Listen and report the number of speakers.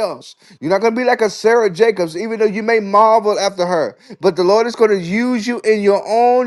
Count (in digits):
1